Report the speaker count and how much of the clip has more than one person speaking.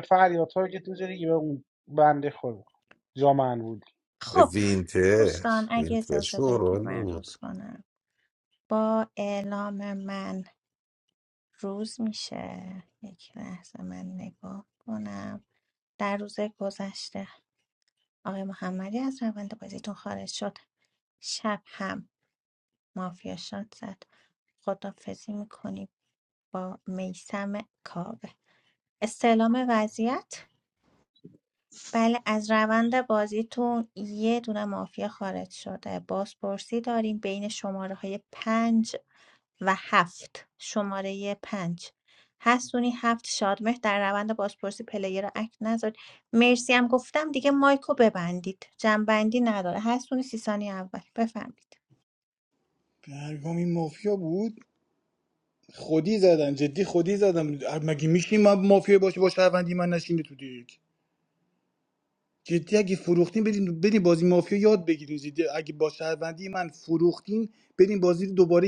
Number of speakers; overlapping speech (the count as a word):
four, about 3%